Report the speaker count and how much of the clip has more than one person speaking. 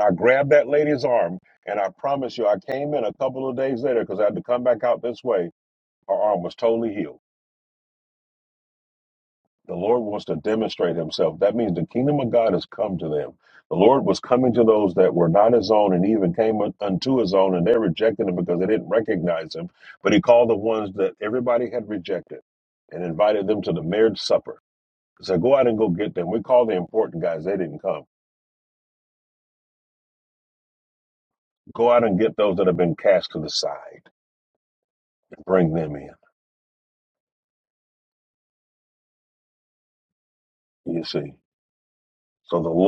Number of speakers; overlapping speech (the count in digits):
1, no overlap